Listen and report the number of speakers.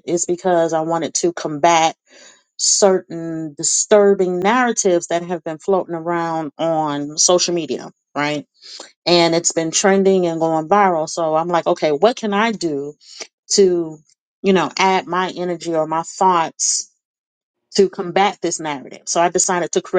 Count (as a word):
one